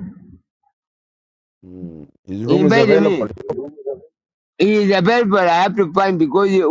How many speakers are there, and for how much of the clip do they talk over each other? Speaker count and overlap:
two, about 12%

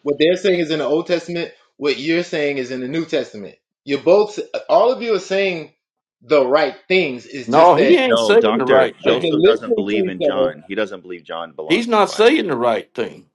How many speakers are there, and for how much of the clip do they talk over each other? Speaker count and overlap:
three, about 29%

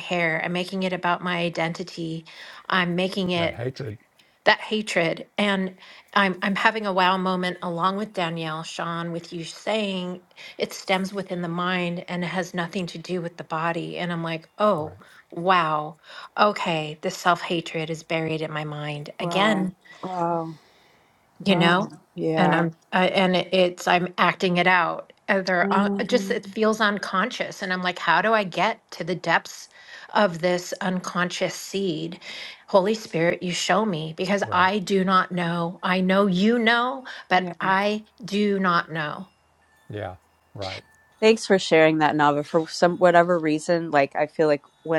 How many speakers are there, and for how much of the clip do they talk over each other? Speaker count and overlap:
three, about 6%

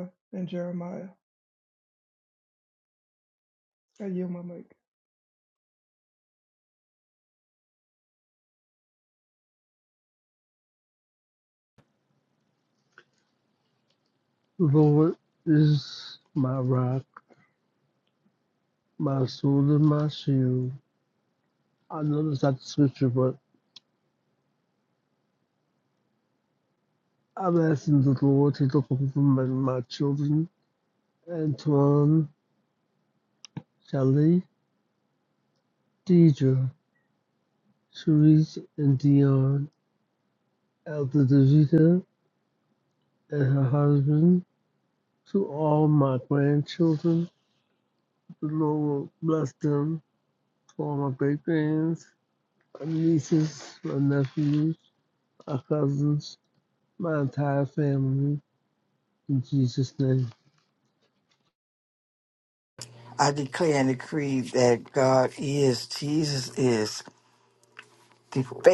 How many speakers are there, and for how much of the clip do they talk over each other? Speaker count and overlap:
three, no overlap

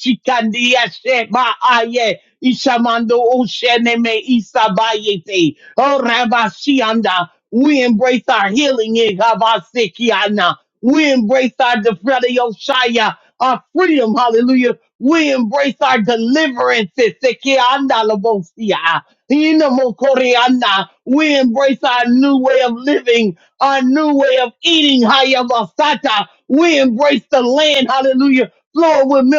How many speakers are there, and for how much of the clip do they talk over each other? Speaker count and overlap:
one, no overlap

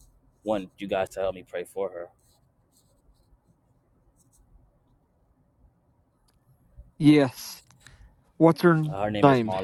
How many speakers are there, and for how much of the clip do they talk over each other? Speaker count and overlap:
two, about 4%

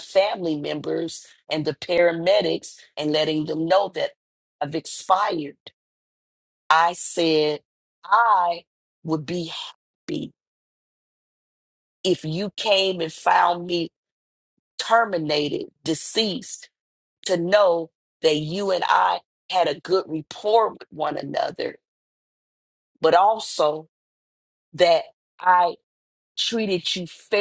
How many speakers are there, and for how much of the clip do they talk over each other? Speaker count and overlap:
one, no overlap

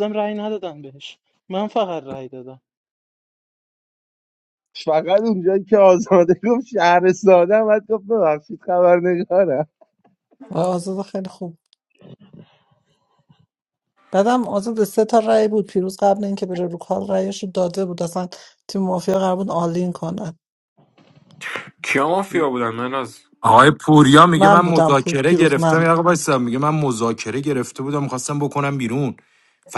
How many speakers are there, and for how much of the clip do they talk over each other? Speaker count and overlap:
five, about 6%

